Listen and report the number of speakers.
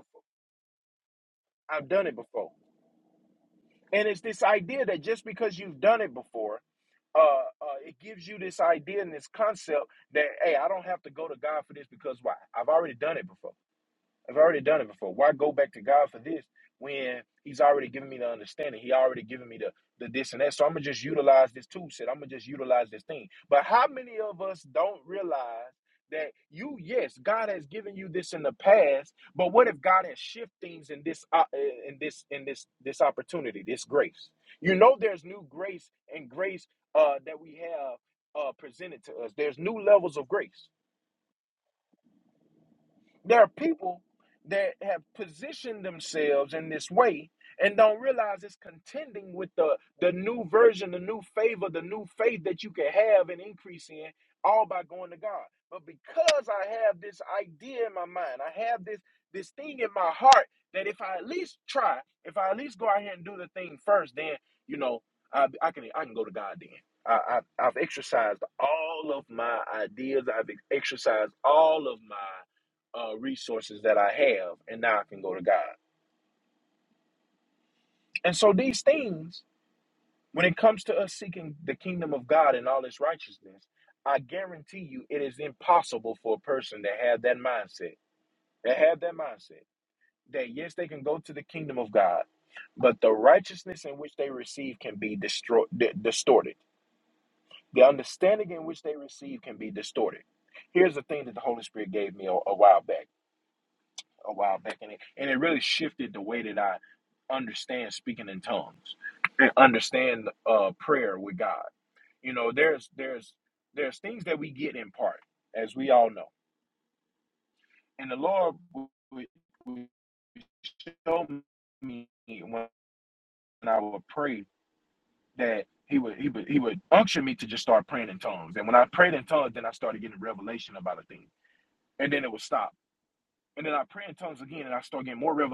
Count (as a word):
one